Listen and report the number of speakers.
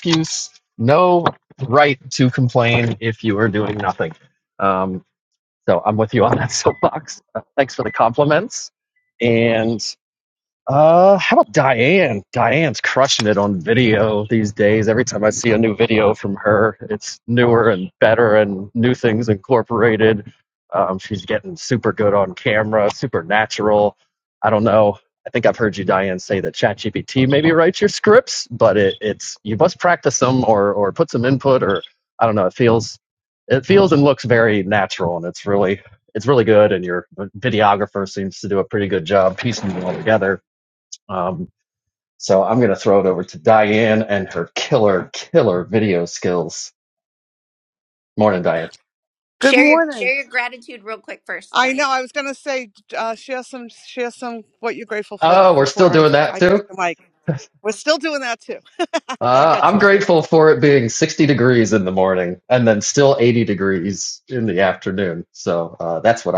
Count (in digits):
3